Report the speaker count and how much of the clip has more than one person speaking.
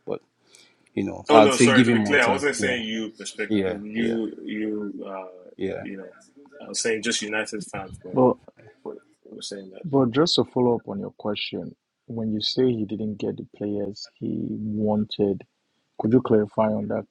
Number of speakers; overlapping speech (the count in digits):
3, about 14%